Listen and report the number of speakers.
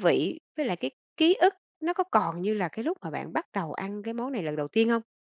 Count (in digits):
1